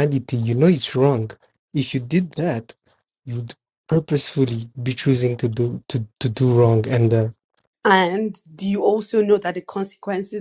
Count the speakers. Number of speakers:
two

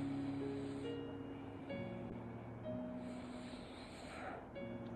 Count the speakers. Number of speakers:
zero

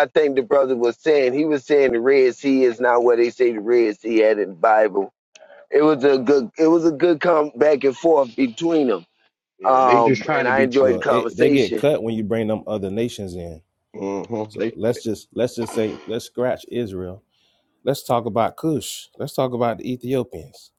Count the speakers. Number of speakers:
three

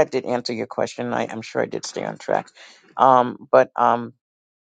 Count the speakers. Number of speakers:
one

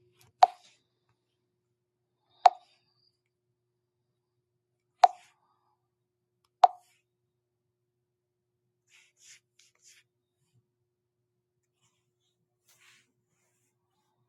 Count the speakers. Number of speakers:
zero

